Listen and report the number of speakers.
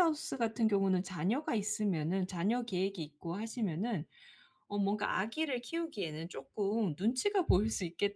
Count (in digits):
1